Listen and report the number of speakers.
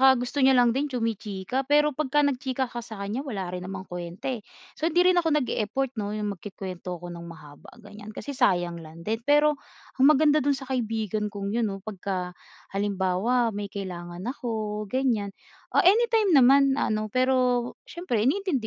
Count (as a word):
one